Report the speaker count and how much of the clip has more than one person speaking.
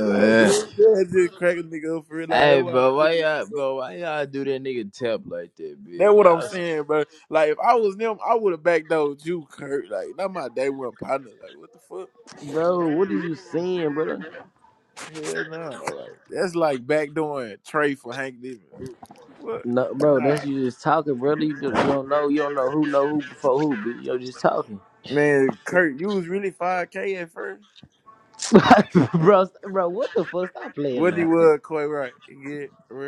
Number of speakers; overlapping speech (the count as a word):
three, about 10%